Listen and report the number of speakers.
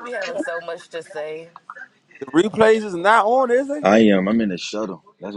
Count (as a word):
three